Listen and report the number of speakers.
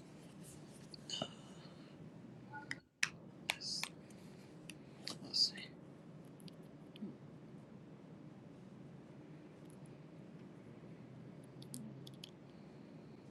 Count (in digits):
0